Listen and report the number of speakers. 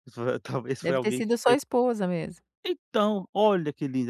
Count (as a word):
two